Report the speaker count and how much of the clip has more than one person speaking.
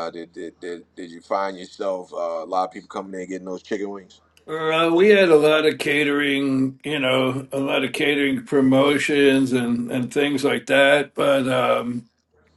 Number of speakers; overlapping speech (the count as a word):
two, no overlap